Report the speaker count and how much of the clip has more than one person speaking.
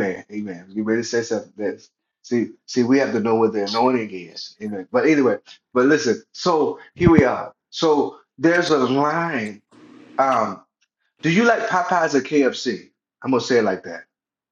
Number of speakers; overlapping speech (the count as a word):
one, no overlap